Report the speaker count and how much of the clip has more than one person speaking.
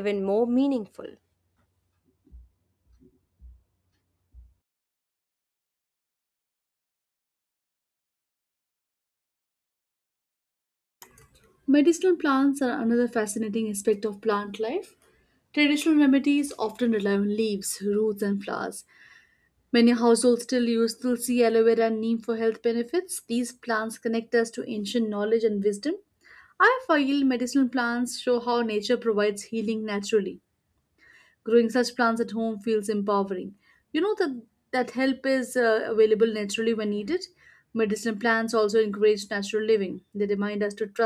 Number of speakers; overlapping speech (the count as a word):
two, no overlap